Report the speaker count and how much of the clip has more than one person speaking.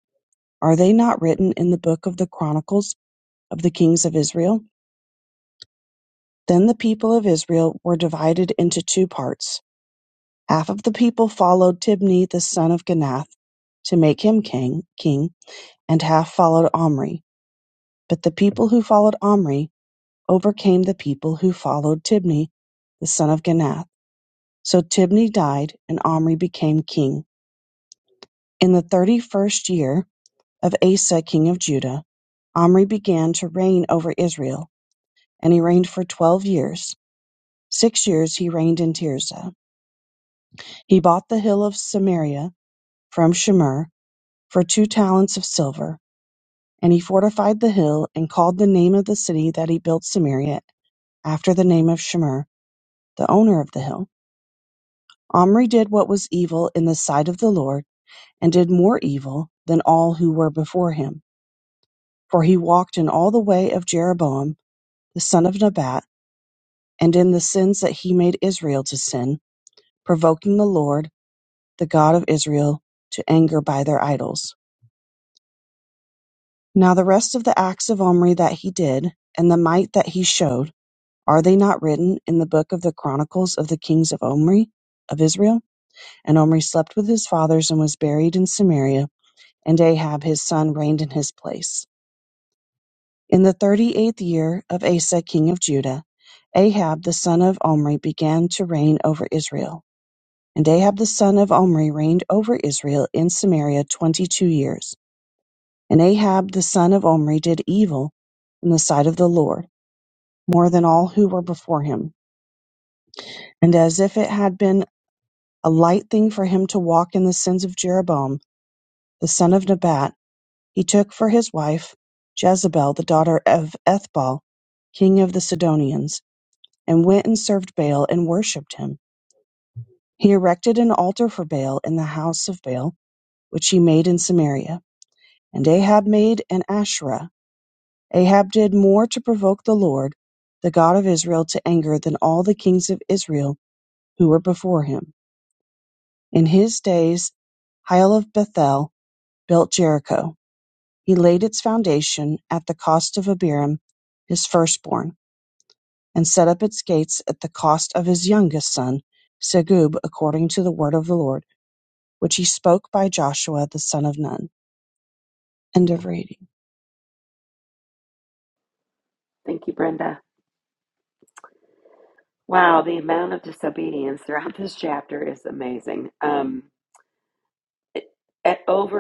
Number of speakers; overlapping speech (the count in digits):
2, no overlap